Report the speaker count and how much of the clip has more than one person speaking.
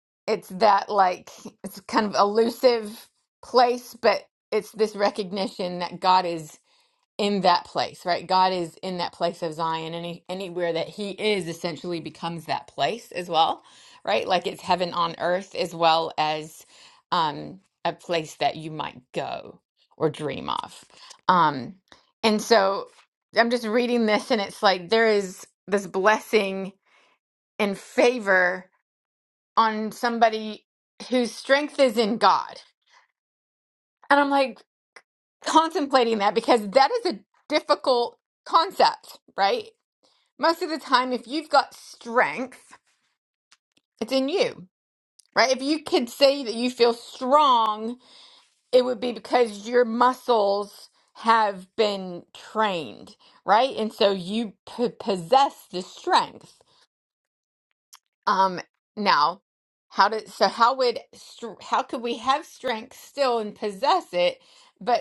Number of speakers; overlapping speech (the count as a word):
one, no overlap